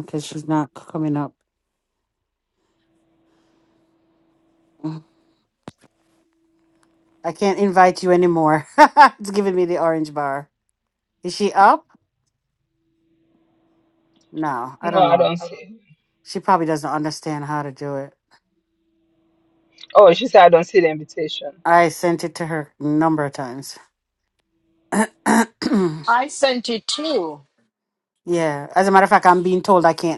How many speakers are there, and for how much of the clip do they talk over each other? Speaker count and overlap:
3, about 1%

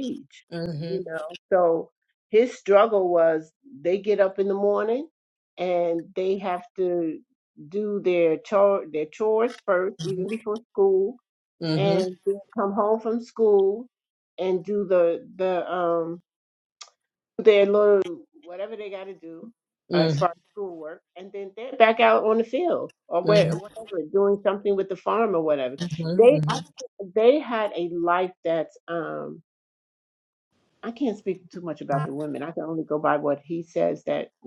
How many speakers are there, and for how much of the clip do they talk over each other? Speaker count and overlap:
2, about 3%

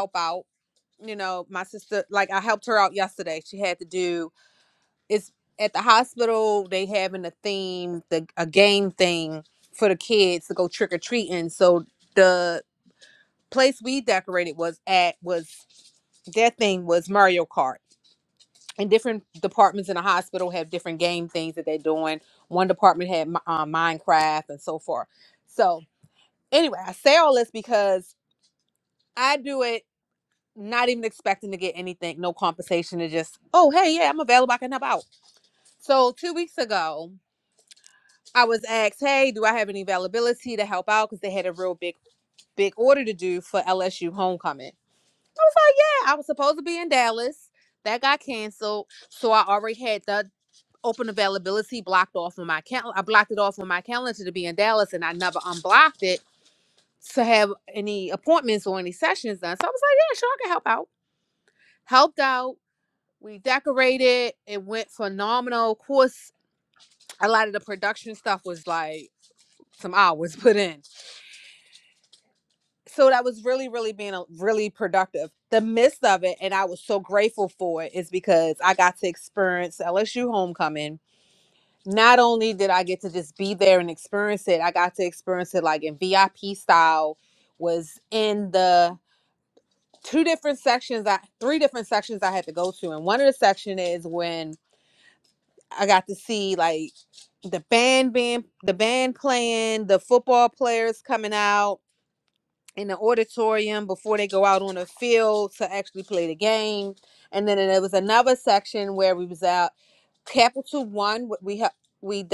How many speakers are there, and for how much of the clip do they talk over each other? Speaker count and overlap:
1, no overlap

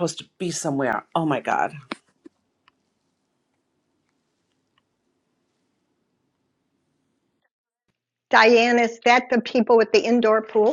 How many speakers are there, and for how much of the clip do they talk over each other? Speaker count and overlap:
2, no overlap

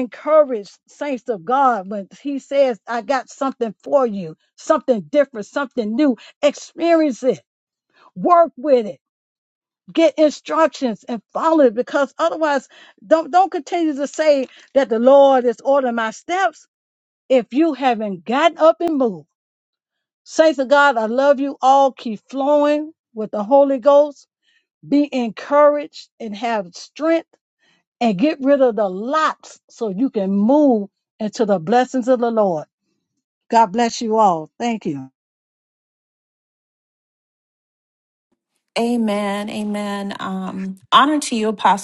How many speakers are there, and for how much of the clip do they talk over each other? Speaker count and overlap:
2, no overlap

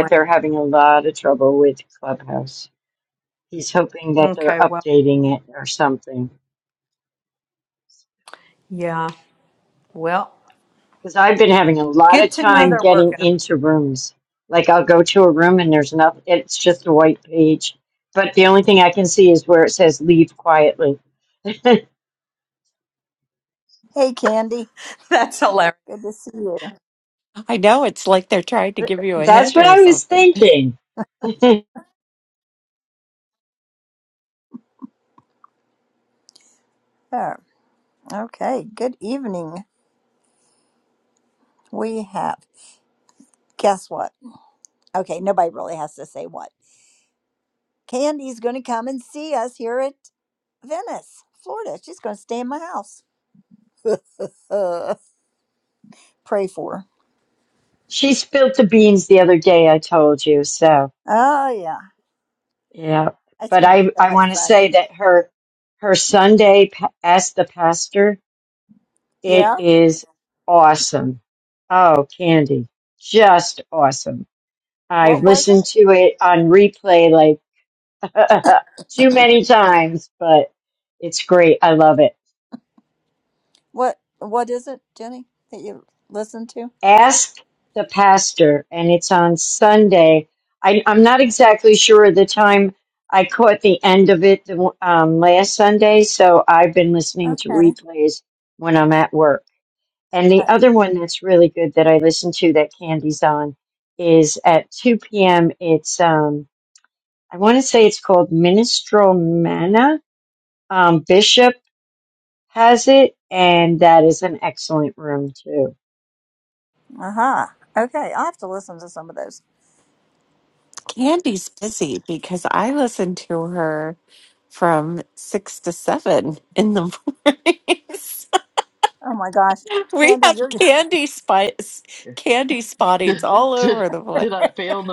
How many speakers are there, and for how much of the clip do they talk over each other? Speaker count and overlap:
5, about 5%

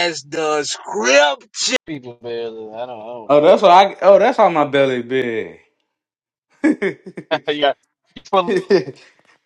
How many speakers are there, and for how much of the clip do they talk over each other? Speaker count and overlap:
3, about 1%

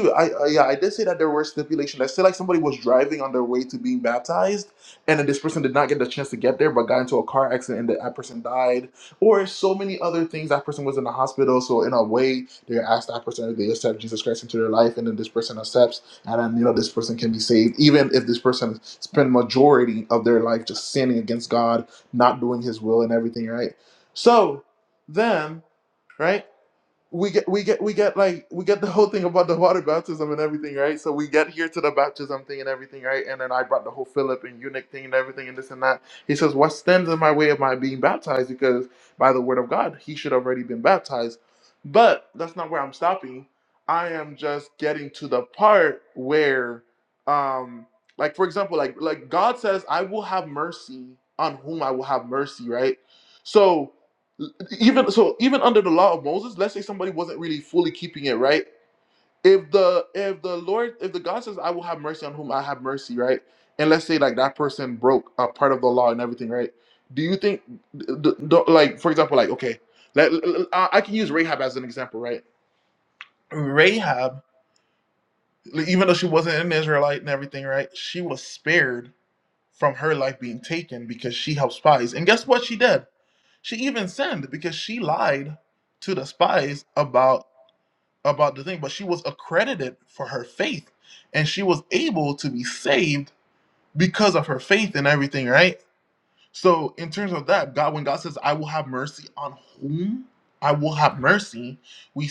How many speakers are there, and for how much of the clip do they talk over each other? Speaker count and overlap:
1, no overlap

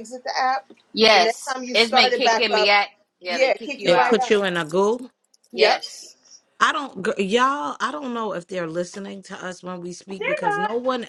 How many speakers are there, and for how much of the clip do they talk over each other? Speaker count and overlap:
3, about 27%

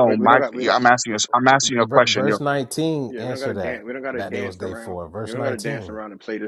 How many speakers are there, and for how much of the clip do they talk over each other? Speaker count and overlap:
3, about 66%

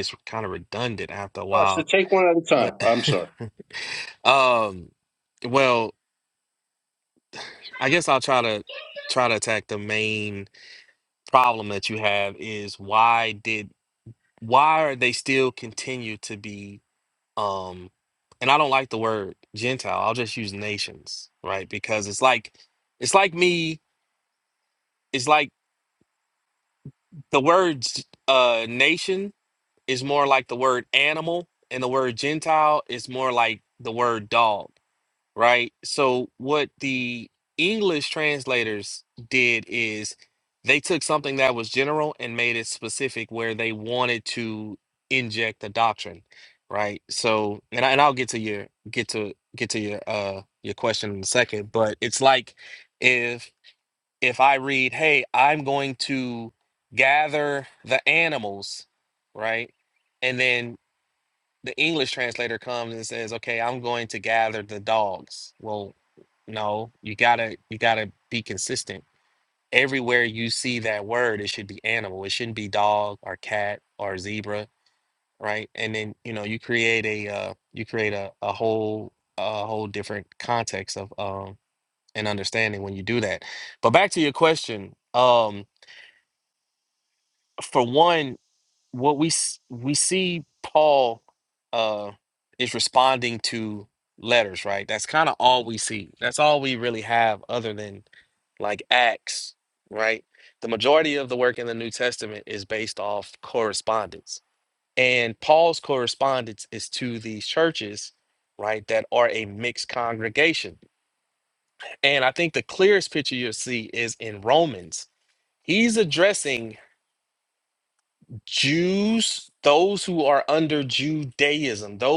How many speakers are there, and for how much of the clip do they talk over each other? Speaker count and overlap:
2, under 1%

